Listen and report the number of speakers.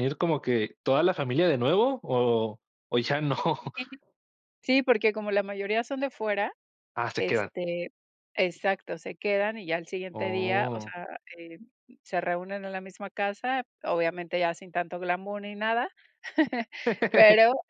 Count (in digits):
2